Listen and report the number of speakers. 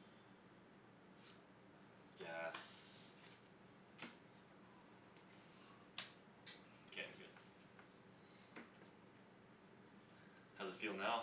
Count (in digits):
1